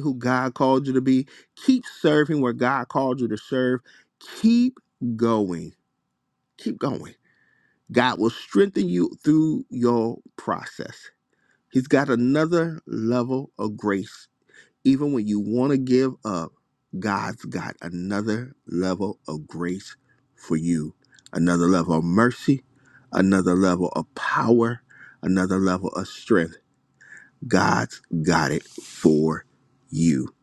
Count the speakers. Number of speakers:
1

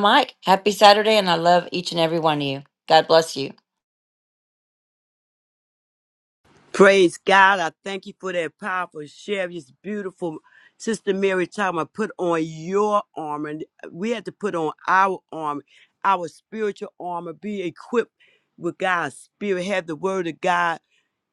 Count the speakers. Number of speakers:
2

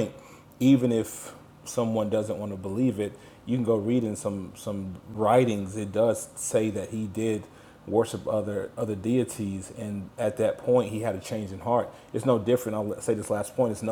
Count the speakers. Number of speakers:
1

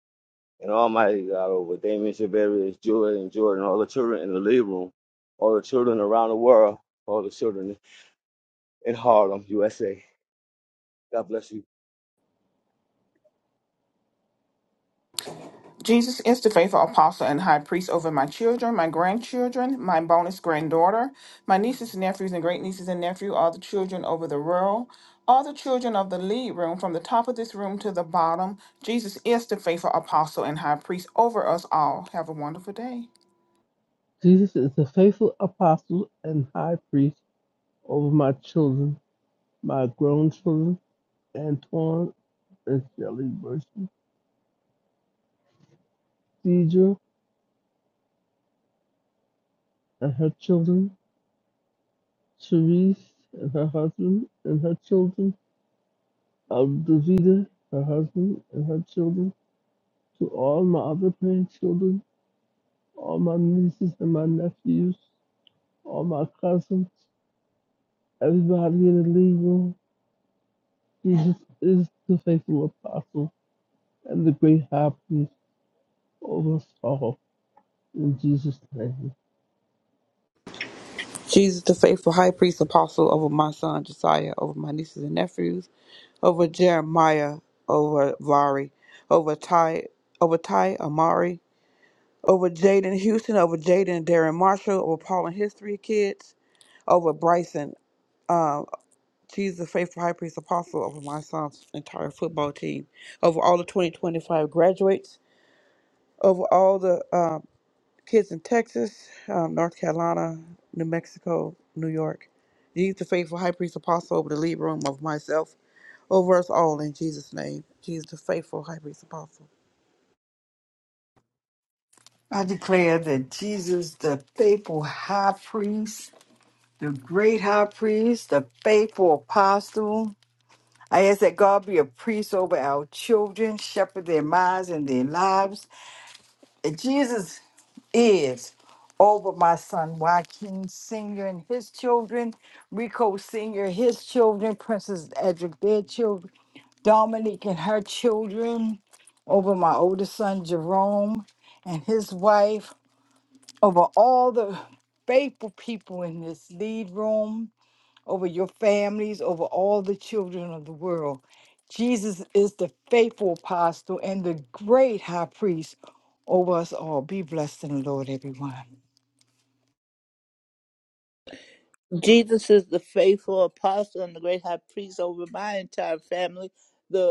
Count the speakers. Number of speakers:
6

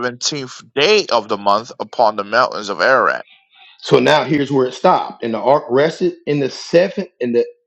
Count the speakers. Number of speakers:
2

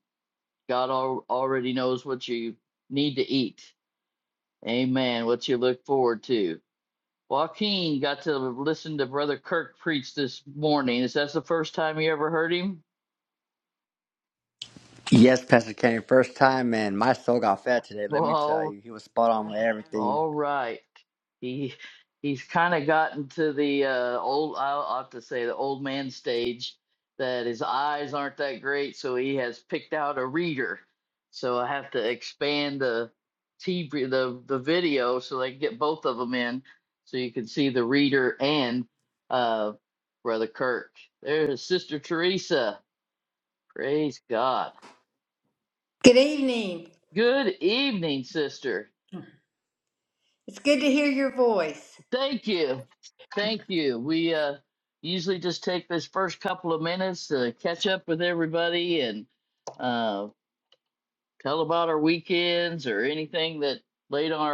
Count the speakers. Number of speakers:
3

